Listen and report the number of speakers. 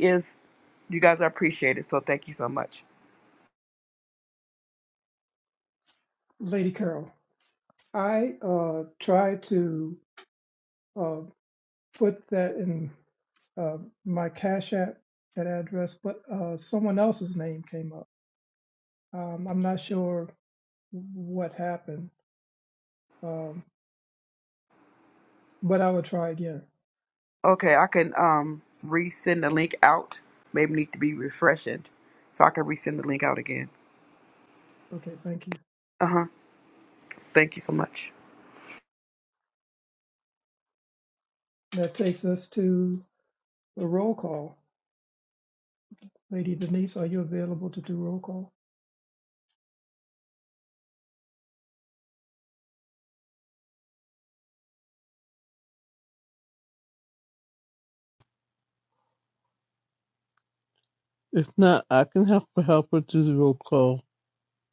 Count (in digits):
3